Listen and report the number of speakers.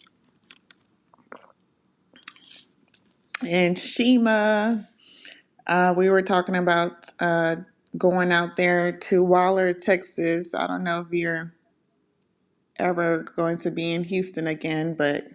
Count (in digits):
1